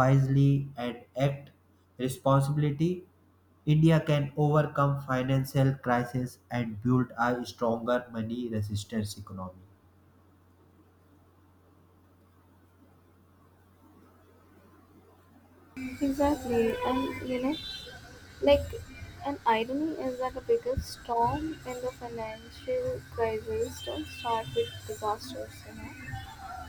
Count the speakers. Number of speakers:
two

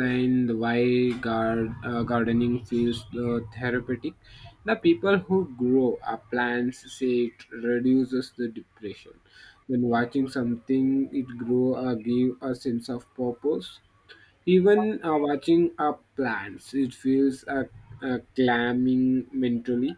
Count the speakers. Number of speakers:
one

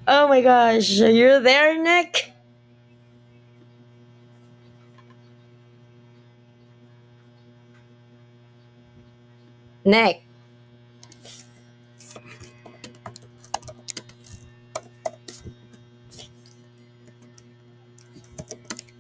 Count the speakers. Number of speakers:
one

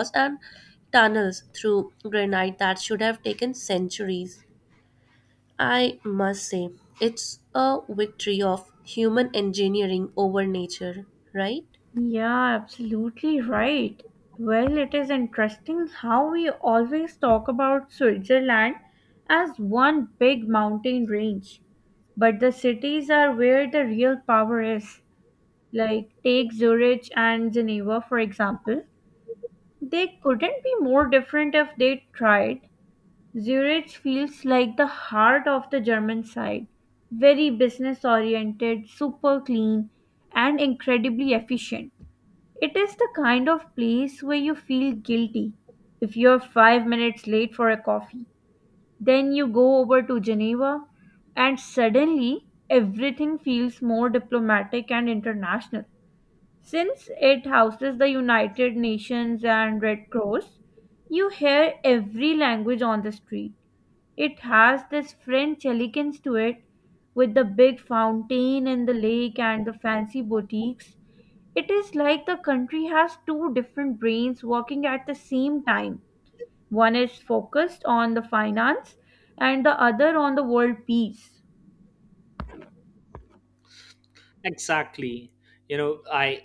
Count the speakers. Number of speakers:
three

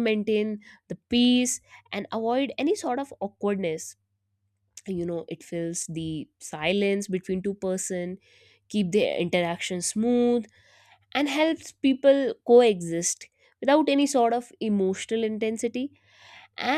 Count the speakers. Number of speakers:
one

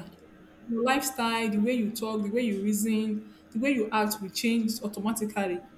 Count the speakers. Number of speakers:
one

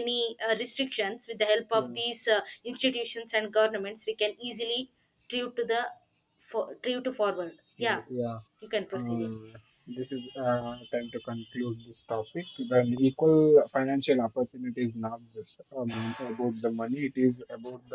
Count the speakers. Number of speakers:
two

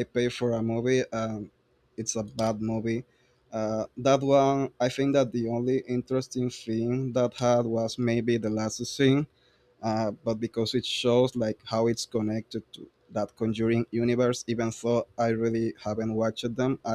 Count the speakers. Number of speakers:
one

